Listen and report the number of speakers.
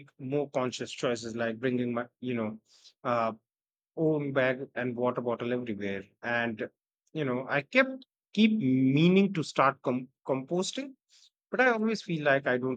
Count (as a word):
one